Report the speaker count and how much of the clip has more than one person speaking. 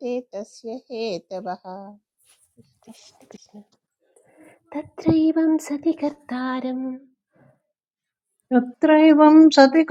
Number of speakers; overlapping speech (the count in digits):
3, no overlap